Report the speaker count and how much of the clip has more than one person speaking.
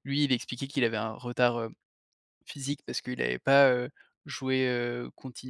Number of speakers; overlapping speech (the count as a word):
one, no overlap